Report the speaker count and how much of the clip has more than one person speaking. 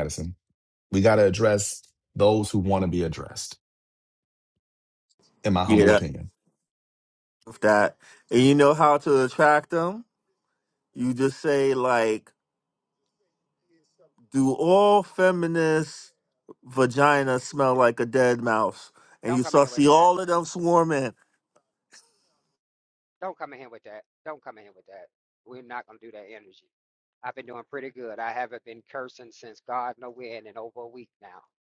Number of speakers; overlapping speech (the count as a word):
three, about 4%